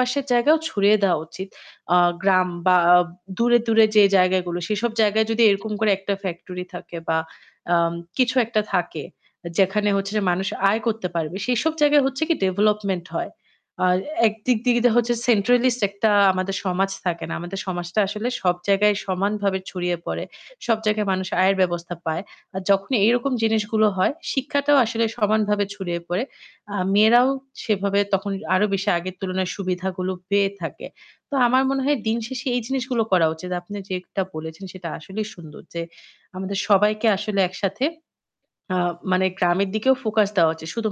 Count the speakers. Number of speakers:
one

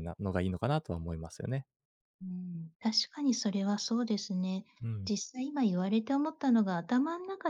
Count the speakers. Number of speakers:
two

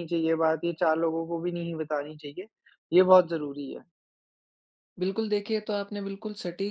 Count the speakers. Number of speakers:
two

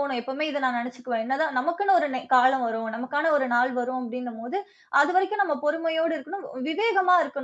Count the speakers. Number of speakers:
one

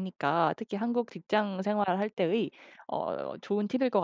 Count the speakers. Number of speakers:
one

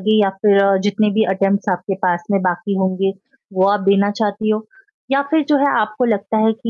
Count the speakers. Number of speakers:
one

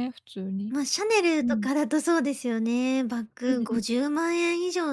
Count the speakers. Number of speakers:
two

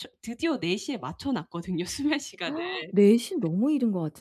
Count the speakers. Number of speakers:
two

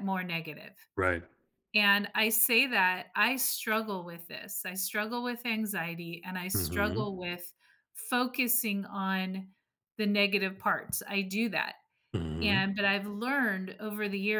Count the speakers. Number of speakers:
two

